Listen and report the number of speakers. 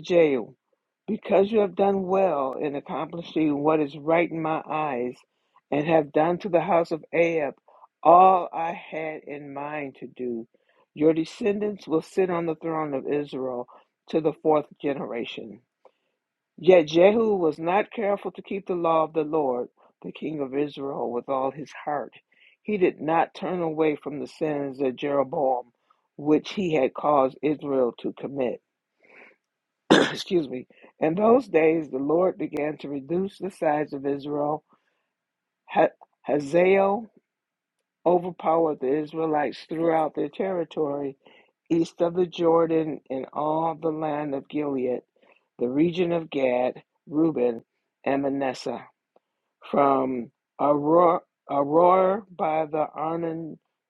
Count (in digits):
1